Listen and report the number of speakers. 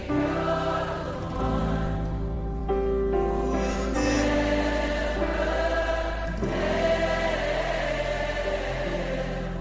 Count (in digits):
0